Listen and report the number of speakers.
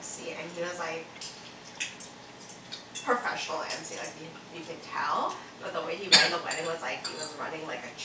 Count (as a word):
one